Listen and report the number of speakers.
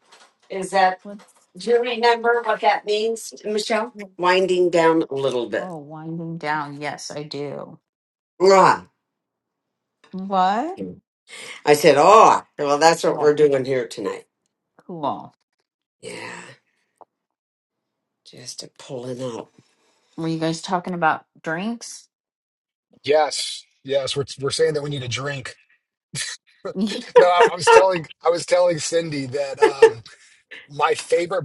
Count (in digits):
3